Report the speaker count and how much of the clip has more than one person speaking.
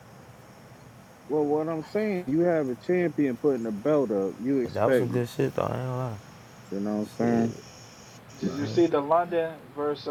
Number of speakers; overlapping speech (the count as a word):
three, about 11%